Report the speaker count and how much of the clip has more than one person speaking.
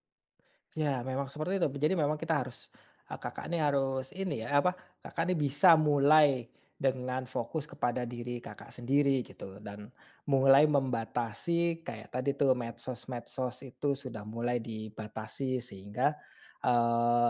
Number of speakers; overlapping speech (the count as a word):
one, no overlap